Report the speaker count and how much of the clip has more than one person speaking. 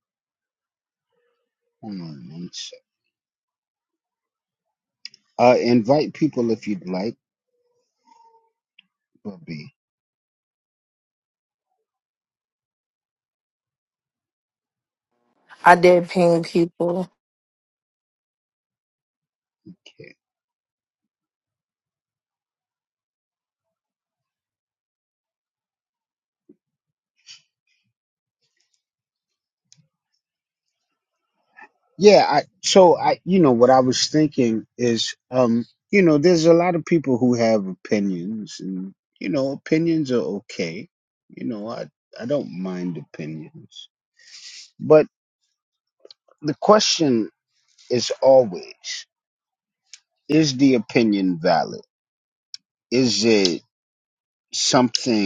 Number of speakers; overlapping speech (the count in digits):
2, no overlap